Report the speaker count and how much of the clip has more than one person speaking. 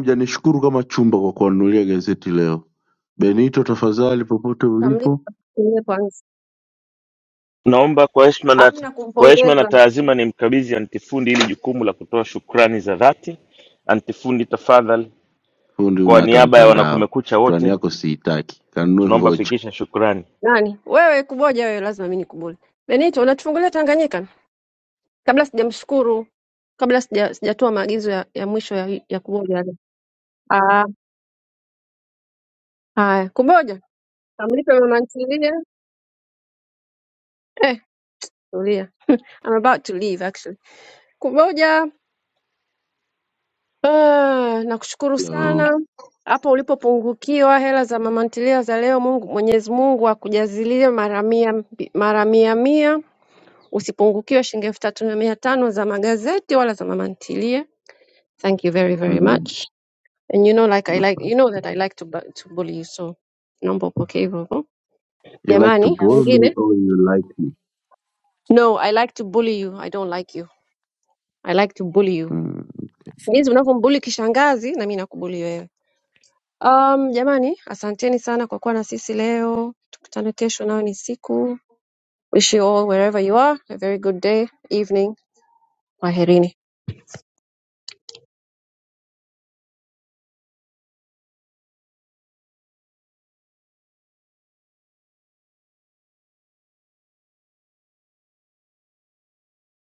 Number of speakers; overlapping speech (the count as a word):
three, about 6%